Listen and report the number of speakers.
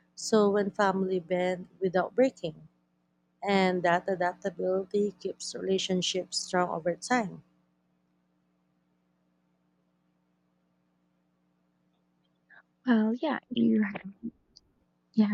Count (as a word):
two